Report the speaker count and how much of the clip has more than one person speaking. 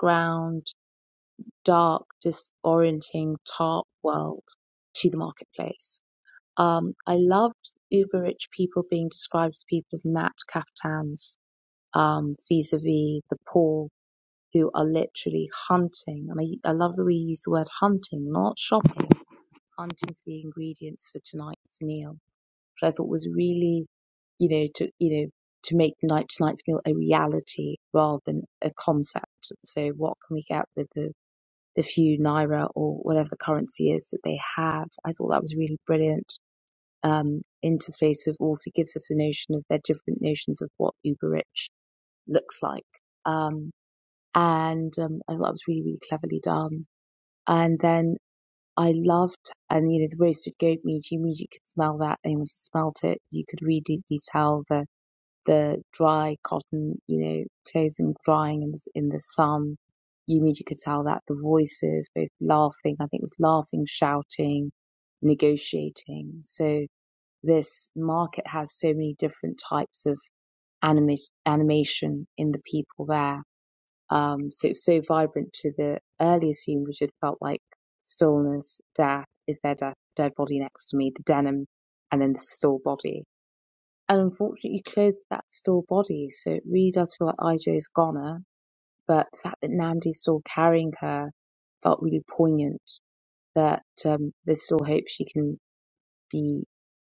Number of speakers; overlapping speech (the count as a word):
one, no overlap